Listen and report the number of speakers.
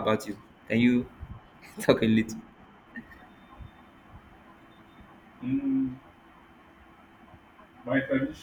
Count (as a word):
two